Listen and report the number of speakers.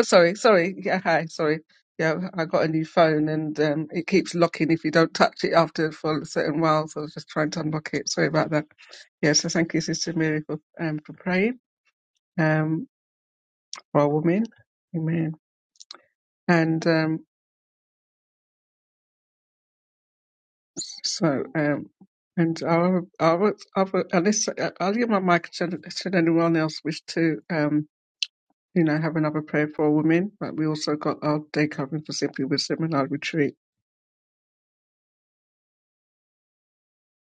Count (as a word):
one